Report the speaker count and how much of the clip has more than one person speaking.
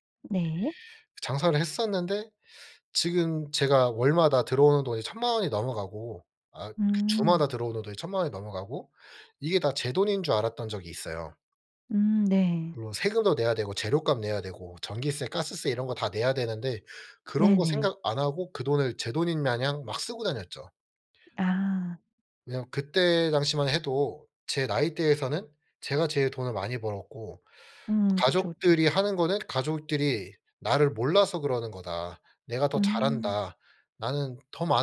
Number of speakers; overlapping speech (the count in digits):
2, about 6%